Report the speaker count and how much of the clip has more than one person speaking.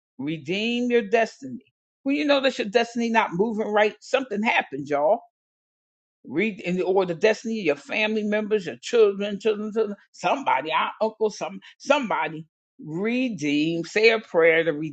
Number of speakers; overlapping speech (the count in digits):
1, no overlap